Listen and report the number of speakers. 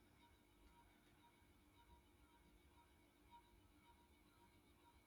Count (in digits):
0